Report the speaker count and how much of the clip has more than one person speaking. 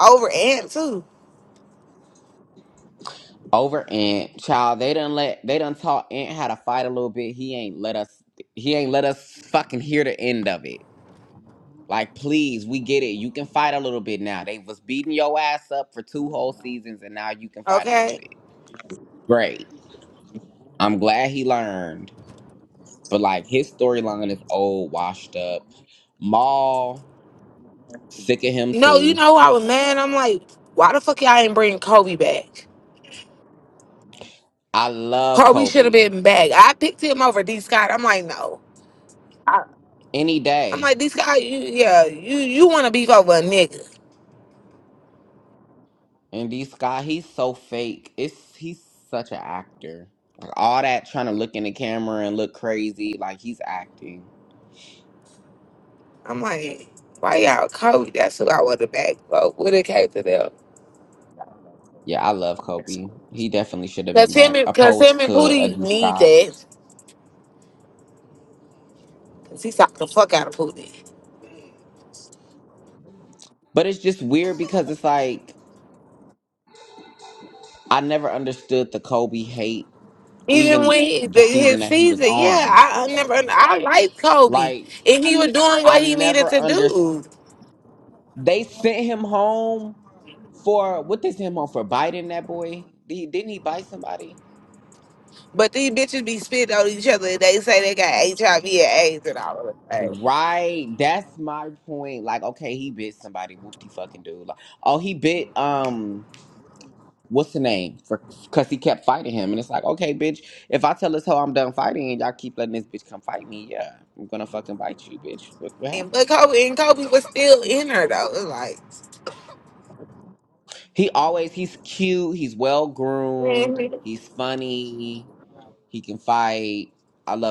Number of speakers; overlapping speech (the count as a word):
two, about 7%